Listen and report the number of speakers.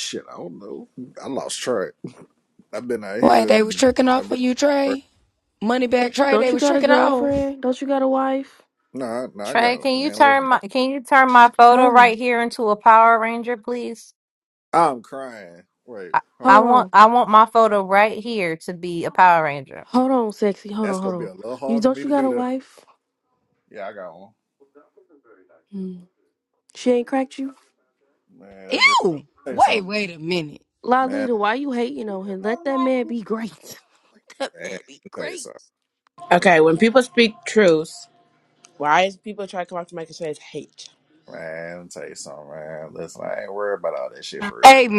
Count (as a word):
five